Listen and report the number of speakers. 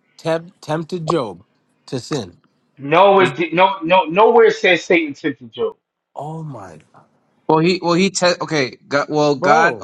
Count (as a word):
three